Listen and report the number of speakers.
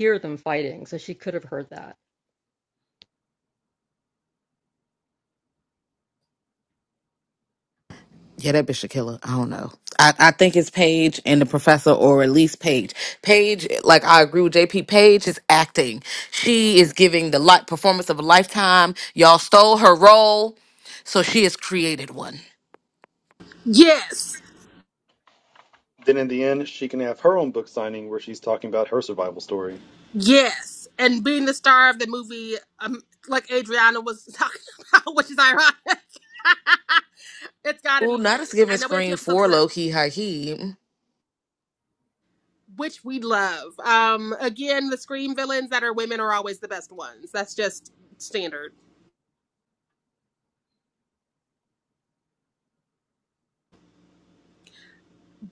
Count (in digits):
4